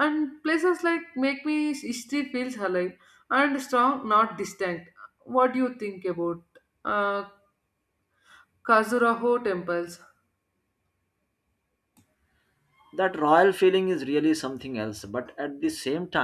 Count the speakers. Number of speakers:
2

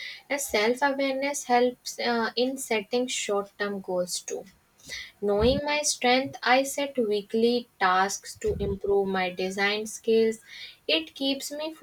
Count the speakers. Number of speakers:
1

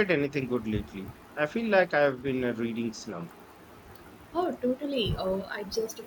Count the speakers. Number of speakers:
2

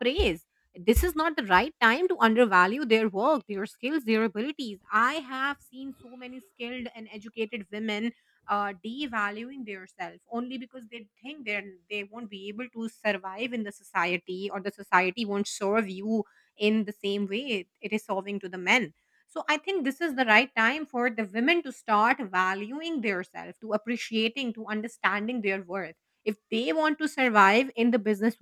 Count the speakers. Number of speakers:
1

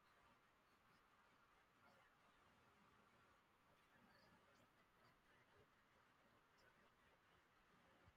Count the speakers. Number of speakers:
0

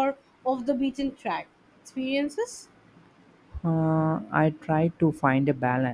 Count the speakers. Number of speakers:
2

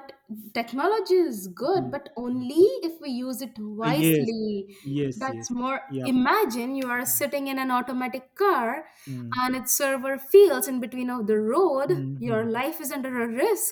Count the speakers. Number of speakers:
2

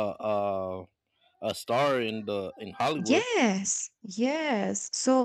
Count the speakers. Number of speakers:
2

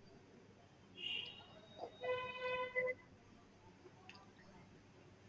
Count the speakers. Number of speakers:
0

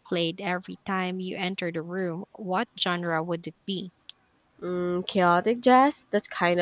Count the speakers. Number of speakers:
2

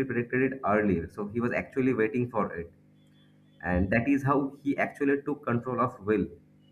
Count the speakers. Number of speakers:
1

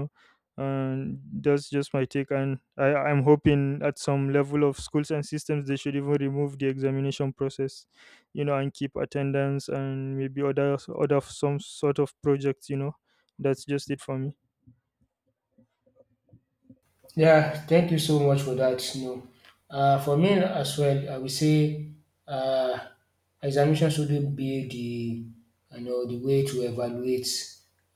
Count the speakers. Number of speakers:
2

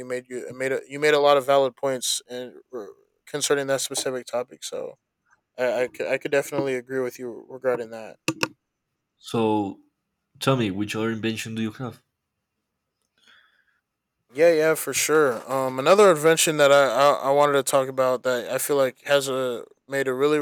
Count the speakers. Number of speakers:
2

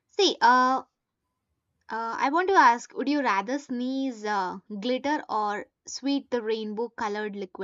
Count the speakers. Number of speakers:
1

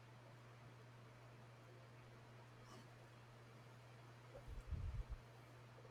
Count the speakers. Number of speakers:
0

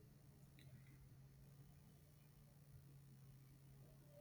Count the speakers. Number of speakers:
0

